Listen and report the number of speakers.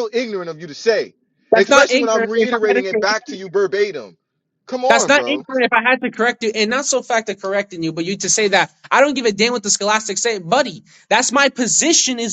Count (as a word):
two